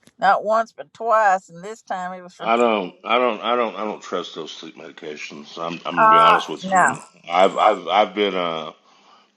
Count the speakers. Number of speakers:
2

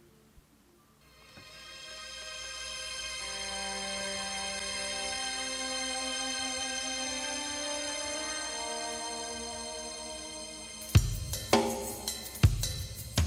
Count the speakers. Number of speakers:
0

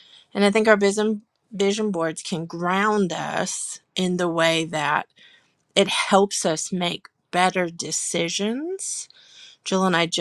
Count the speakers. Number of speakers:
1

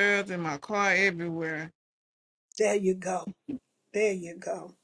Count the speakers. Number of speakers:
2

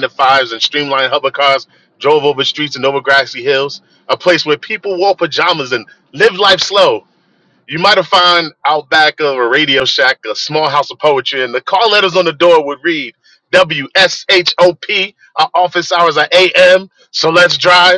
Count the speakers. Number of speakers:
1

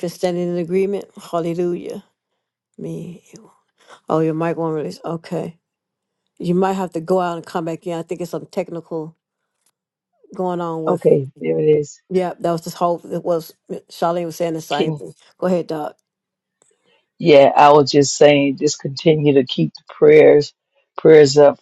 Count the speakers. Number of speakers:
2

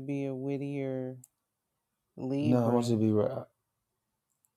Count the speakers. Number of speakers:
2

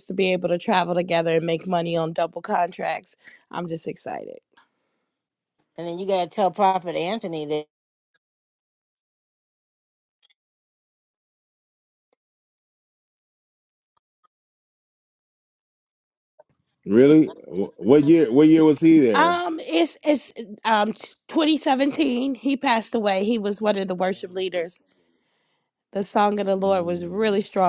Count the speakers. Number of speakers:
3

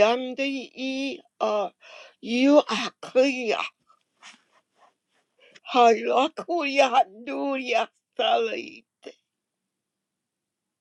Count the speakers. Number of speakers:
1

